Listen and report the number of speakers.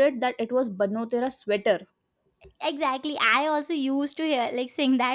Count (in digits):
2